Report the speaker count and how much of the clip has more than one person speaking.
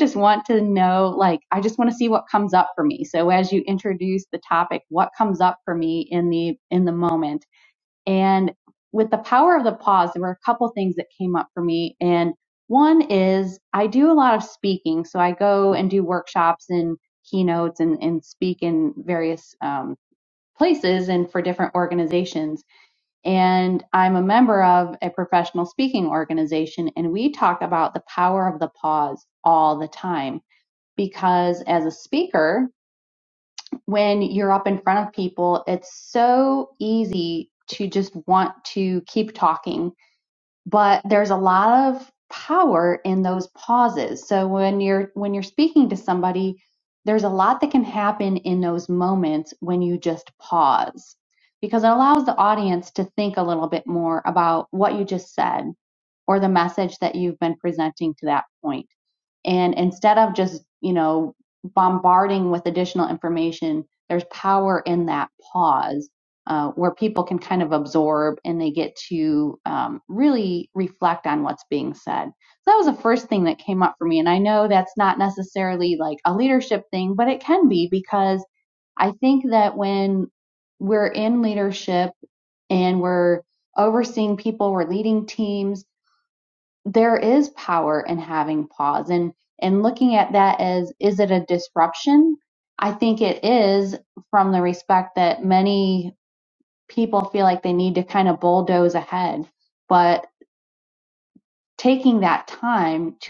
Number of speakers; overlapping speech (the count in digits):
1, no overlap